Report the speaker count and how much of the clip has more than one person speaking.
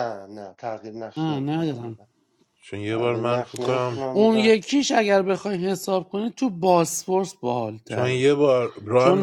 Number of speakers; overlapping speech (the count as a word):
three, about 31%